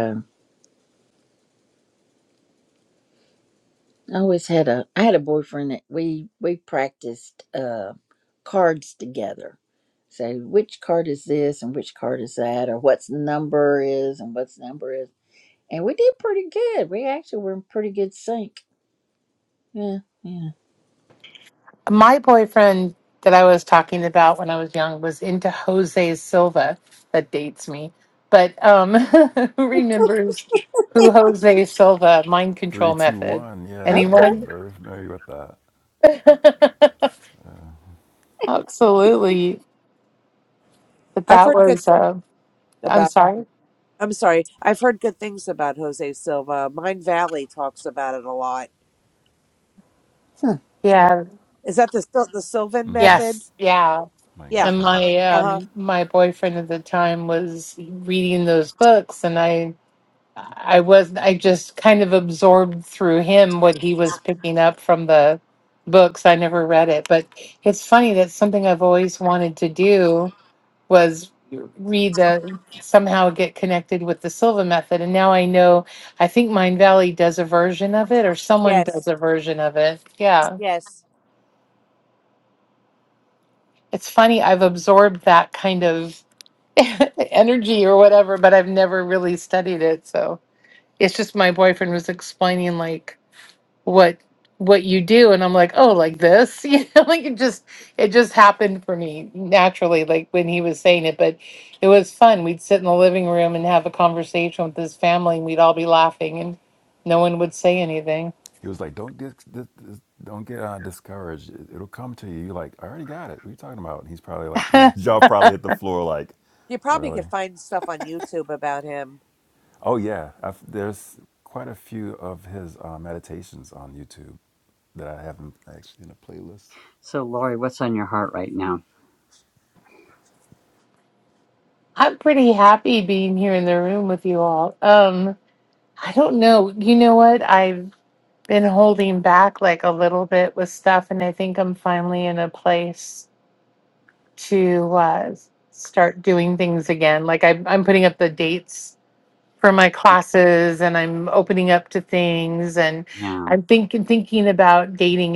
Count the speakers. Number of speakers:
five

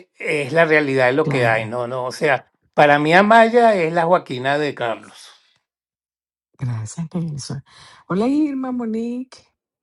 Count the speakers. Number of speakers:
two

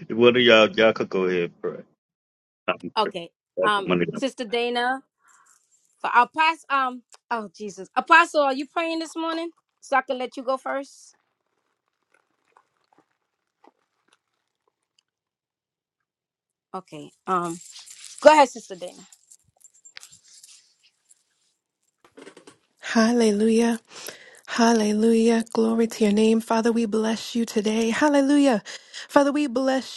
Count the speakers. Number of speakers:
three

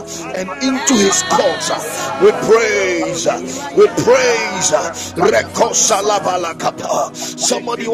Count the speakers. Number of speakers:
two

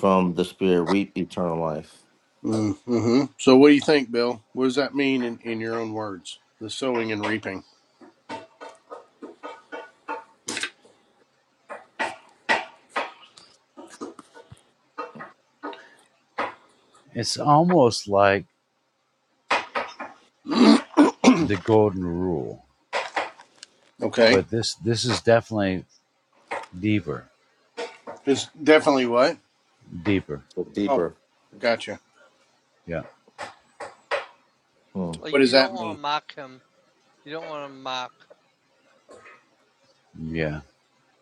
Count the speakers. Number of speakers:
four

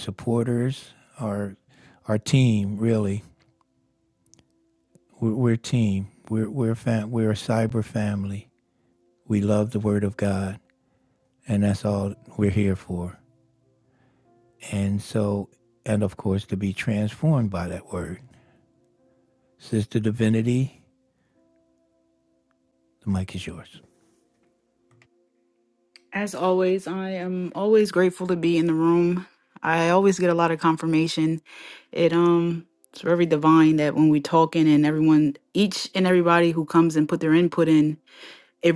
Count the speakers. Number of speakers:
two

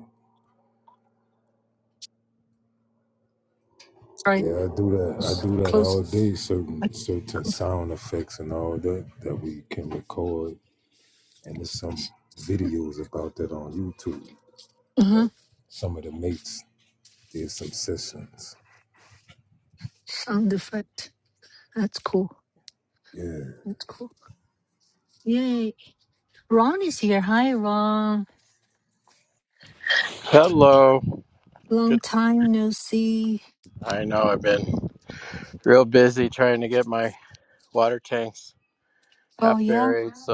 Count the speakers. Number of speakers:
three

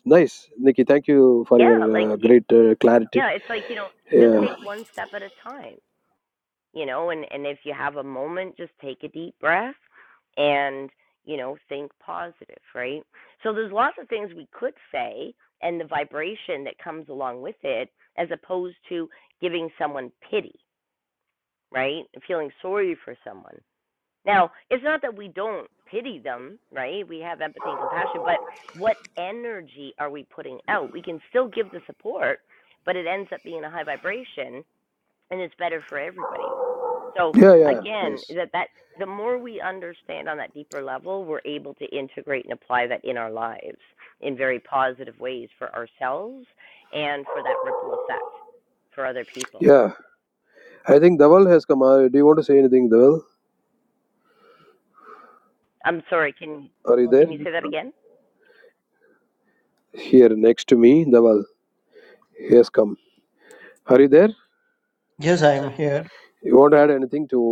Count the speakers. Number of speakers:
three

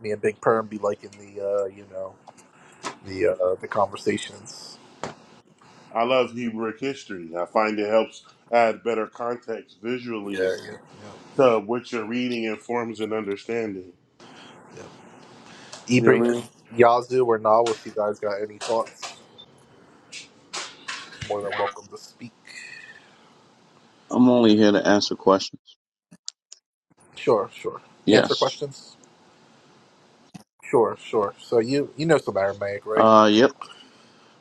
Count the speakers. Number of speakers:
three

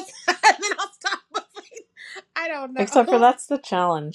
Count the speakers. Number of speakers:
two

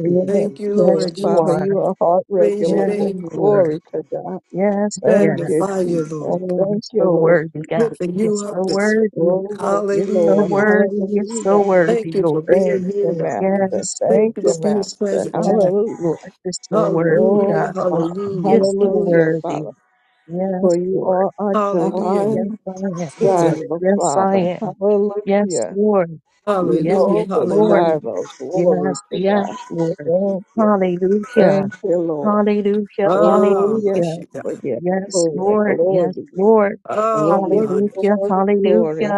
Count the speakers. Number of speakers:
three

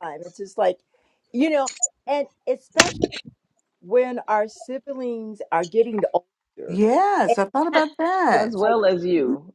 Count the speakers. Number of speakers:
three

